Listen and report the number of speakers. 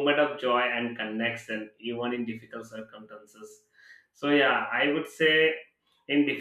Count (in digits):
1